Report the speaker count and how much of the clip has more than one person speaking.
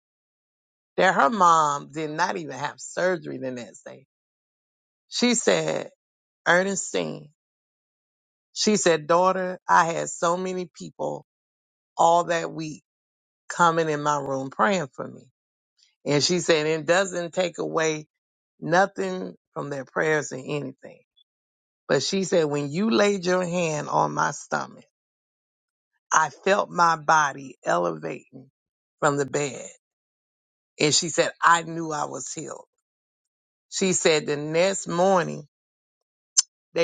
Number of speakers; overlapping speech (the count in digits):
1, no overlap